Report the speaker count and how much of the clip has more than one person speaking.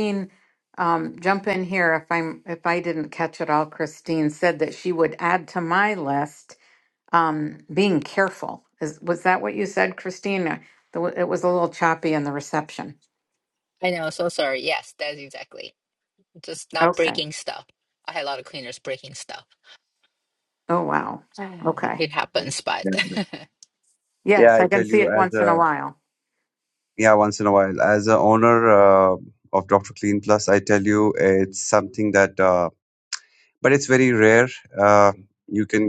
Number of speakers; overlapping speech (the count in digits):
3, about 6%